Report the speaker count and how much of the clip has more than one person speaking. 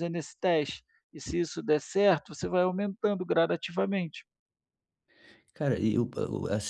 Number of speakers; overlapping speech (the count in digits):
2, no overlap